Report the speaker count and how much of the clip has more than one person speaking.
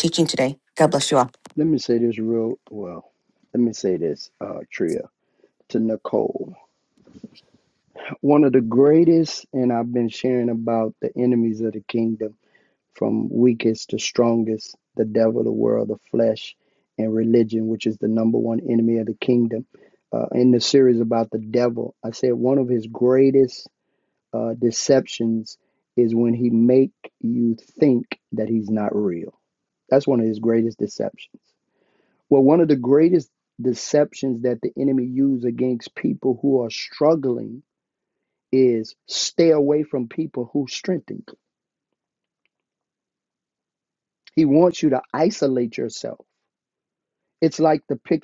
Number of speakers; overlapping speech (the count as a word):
two, no overlap